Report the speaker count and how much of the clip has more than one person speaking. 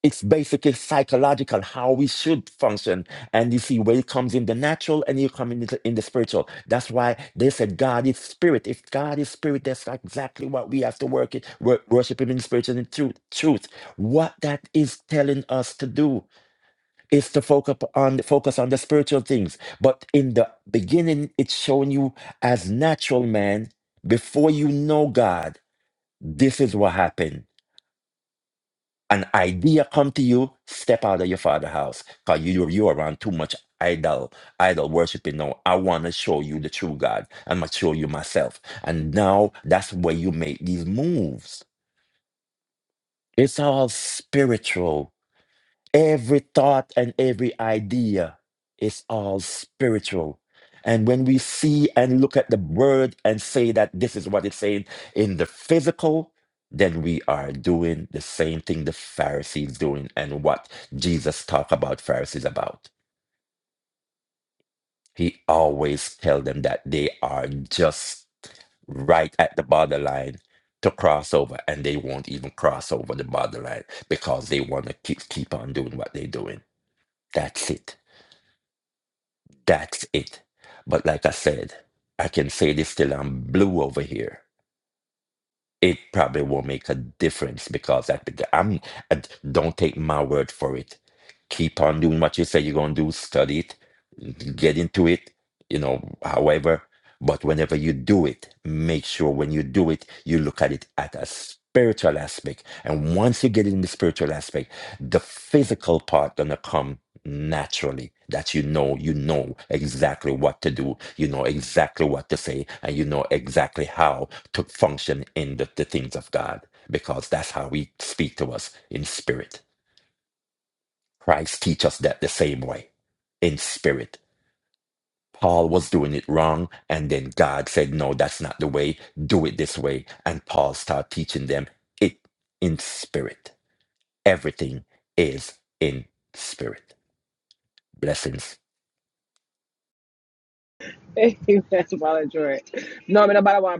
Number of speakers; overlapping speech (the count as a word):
two, no overlap